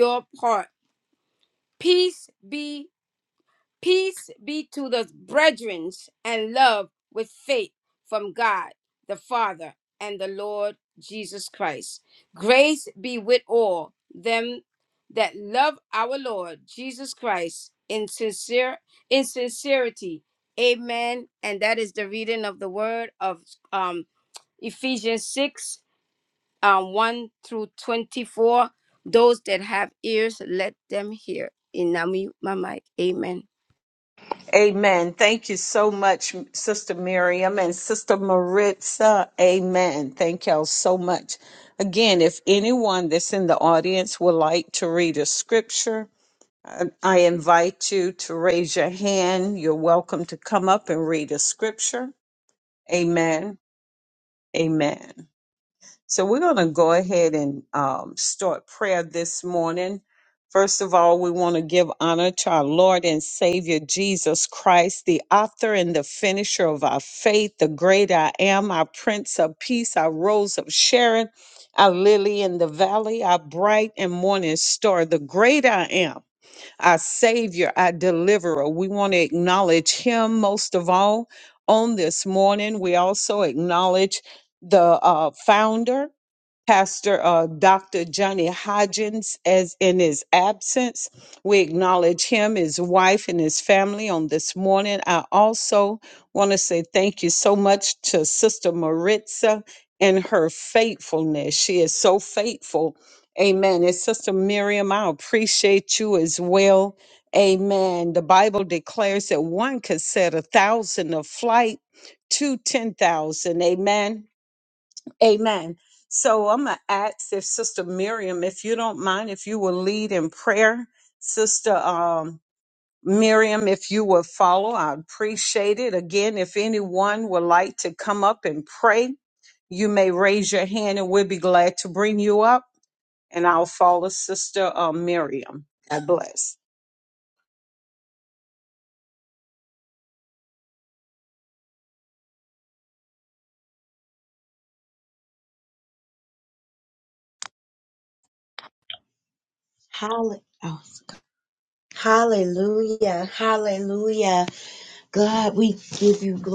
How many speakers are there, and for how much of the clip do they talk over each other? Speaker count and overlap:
3, no overlap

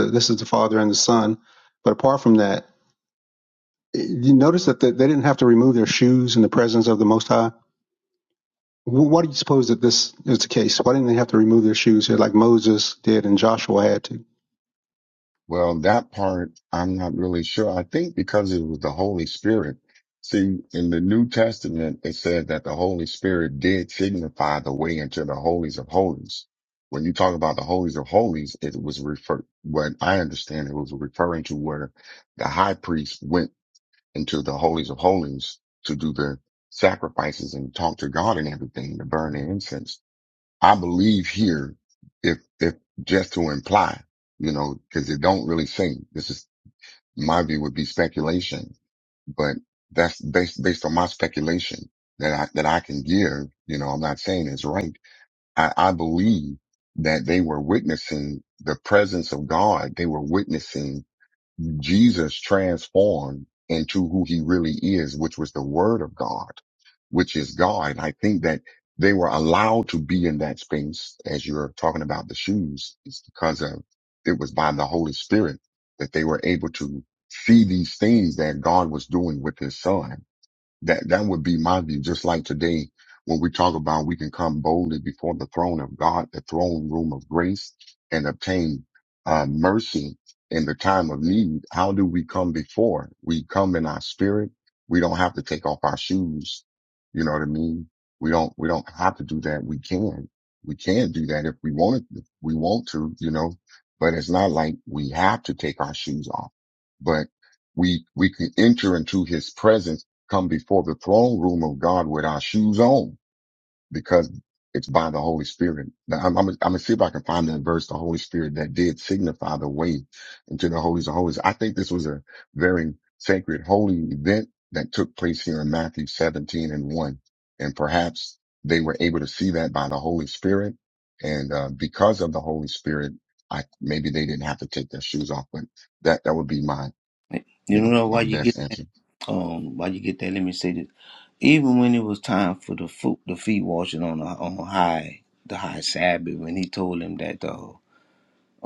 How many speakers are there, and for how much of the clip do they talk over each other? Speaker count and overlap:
3, about 1%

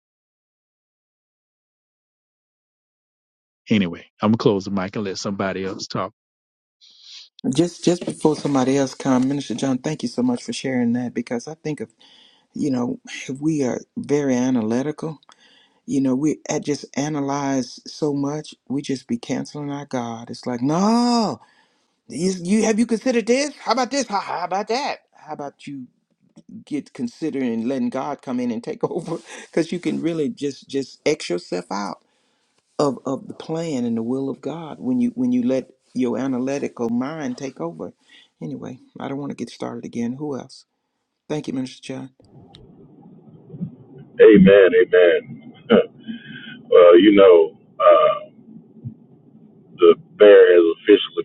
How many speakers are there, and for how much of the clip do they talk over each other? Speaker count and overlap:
3, no overlap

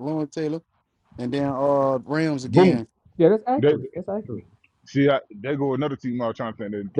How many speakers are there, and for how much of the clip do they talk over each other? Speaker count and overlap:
3, about 7%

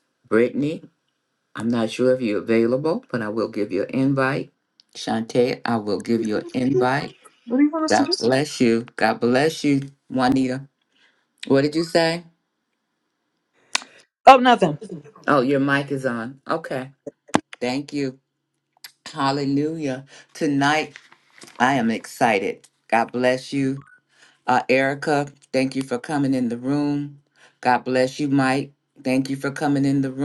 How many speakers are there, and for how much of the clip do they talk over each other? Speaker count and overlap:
2, about 1%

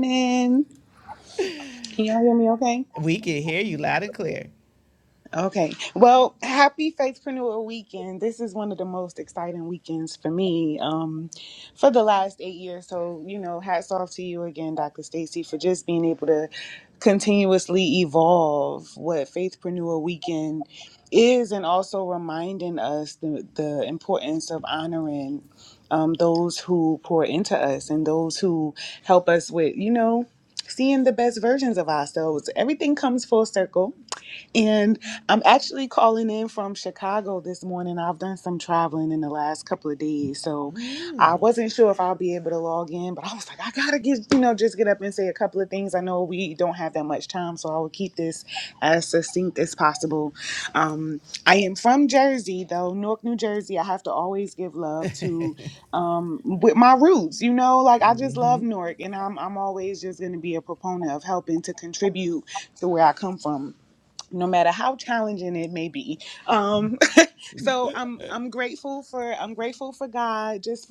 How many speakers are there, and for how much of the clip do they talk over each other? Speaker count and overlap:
2, no overlap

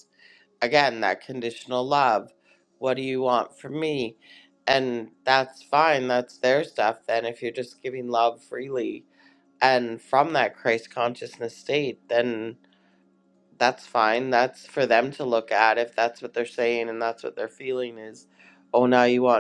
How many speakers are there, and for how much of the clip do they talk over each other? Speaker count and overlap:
1, no overlap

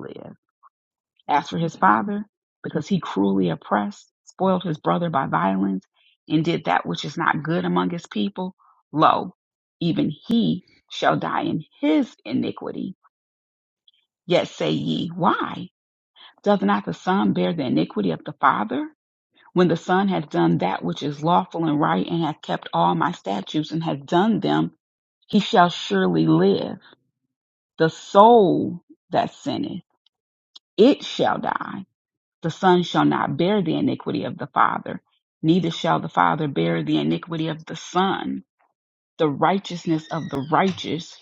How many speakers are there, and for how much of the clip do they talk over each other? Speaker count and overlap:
1, no overlap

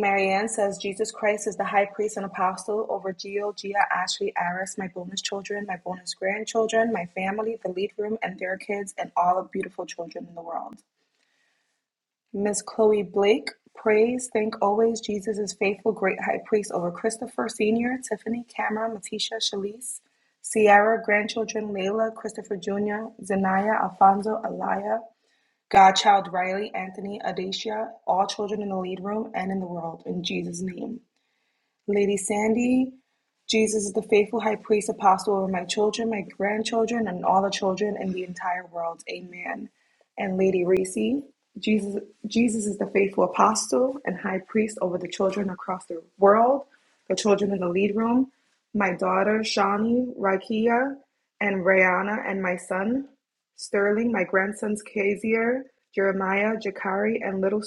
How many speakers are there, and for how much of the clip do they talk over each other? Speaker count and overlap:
1, no overlap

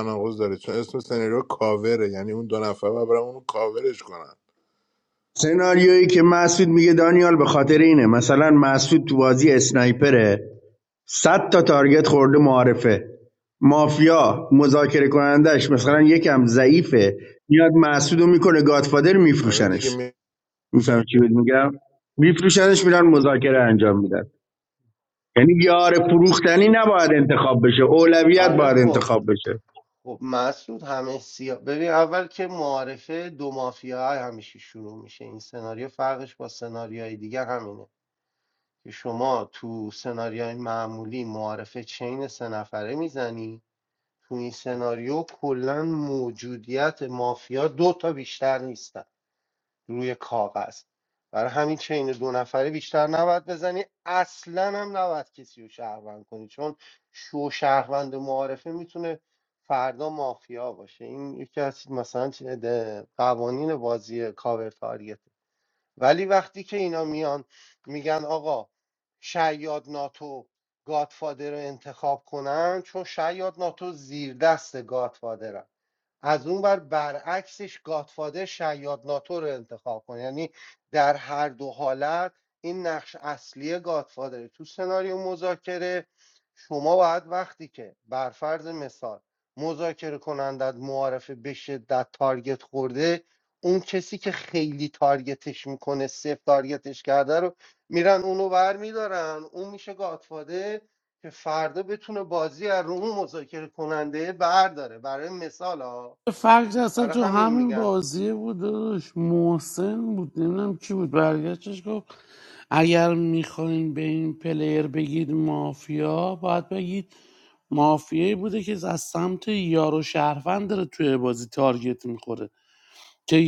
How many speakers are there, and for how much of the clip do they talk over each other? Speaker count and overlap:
4, about 2%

